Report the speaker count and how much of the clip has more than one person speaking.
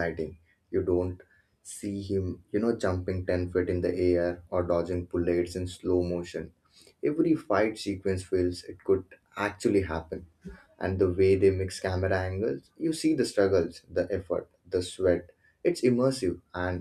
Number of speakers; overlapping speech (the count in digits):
1, no overlap